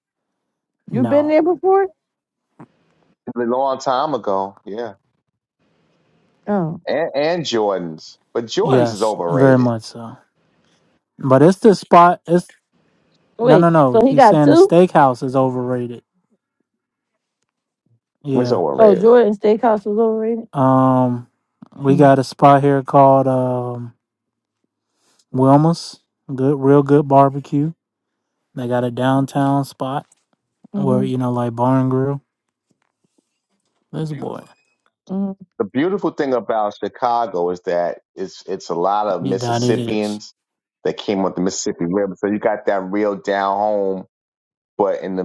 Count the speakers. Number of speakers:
three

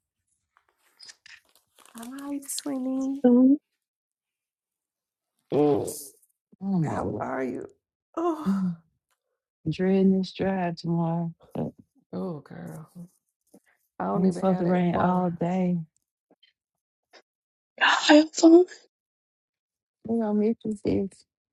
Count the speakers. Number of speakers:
three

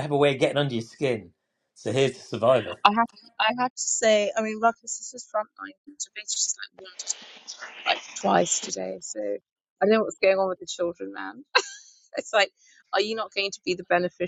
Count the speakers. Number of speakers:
two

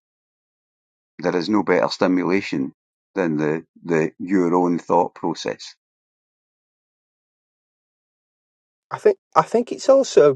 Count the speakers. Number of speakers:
two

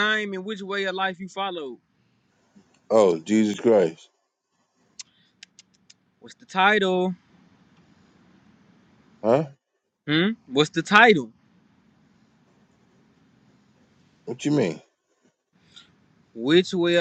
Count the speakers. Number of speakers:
two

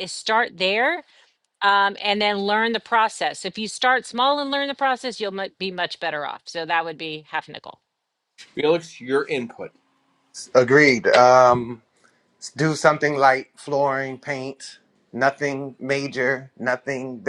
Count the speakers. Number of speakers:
three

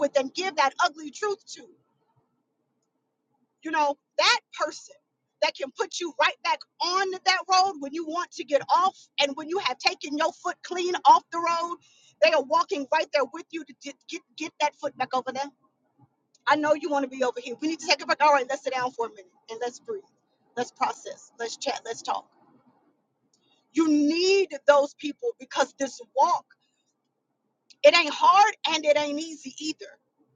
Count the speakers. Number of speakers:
one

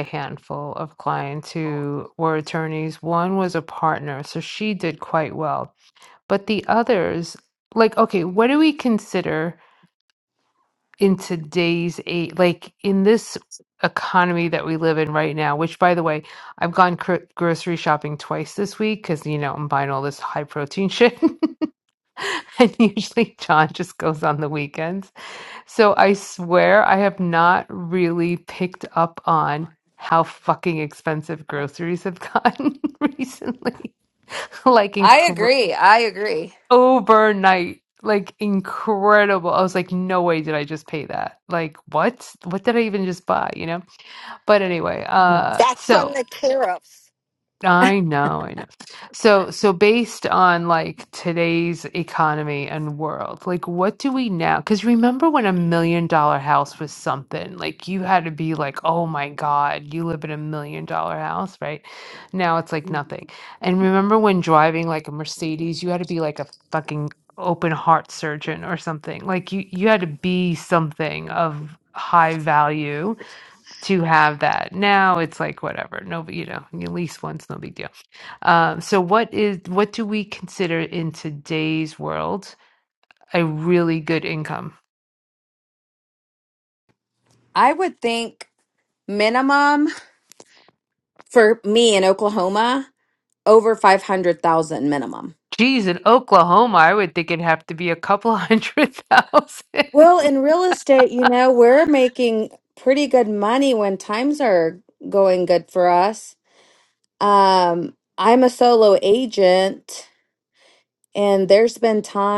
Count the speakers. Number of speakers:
three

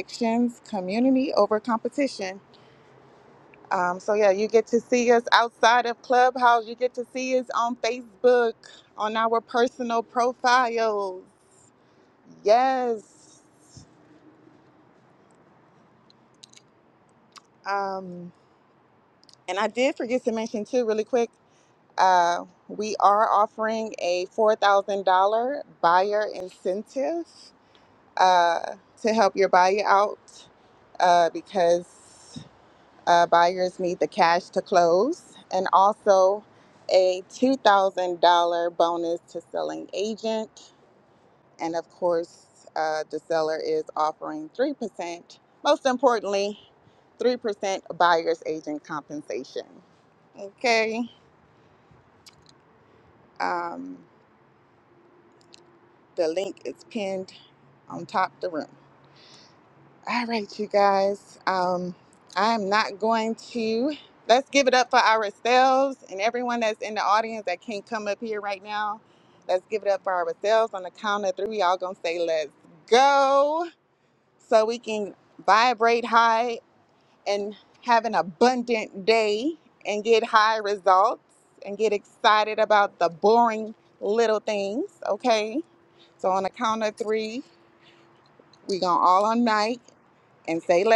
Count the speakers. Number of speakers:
one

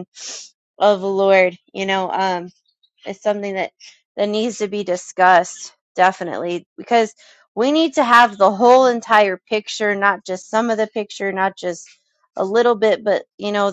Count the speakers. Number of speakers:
one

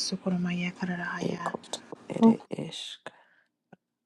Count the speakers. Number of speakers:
two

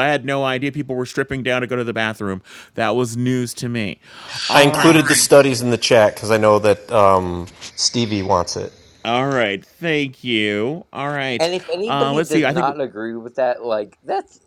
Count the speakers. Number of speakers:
three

